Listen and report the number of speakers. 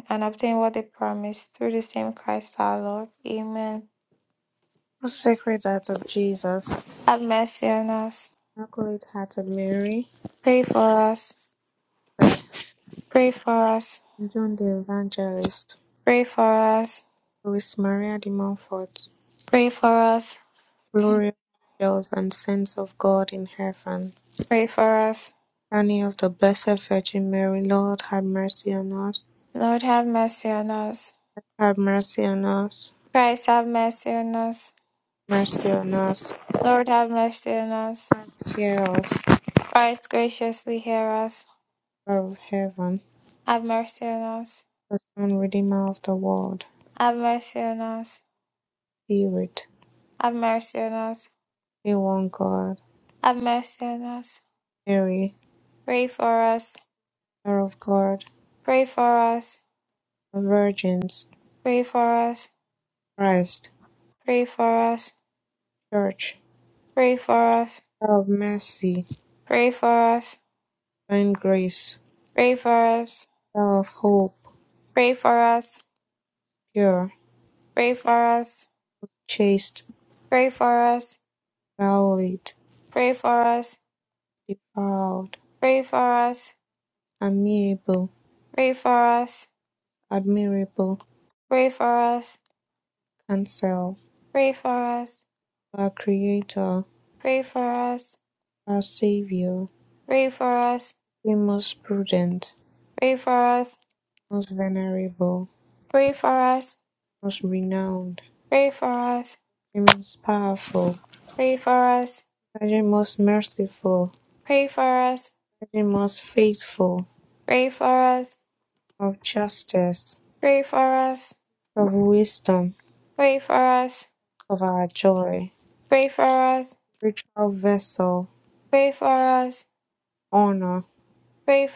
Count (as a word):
two